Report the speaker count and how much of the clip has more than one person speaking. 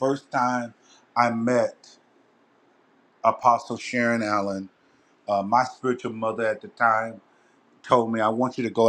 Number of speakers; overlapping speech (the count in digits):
1, no overlap